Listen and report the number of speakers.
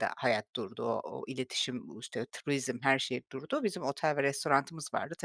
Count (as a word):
one